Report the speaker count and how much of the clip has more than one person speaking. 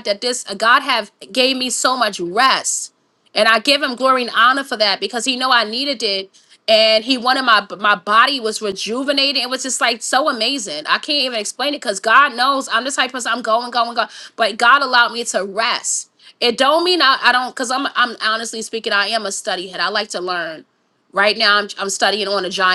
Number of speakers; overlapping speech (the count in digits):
1, no overlap